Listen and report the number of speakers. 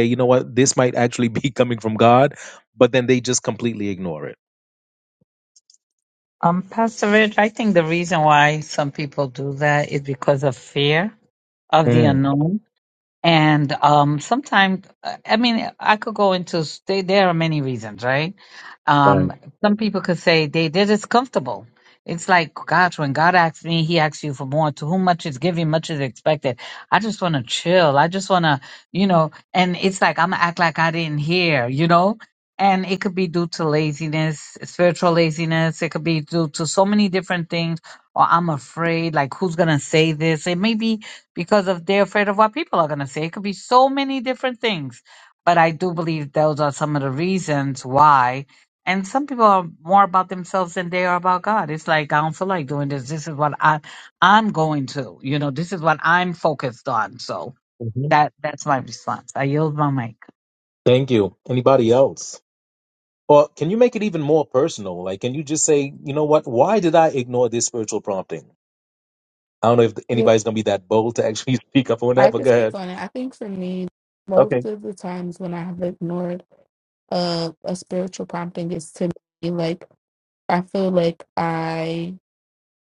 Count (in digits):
3